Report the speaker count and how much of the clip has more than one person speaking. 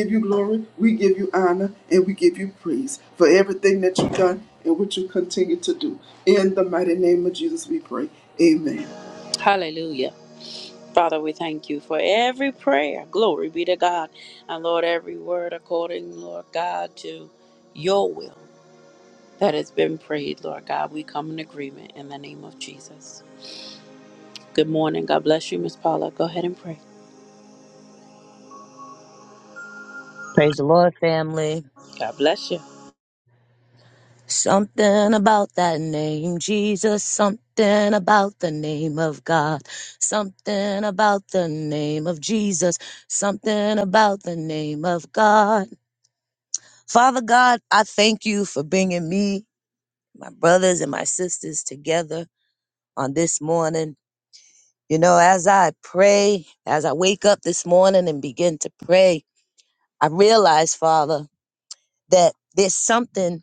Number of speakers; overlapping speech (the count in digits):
3, no overlap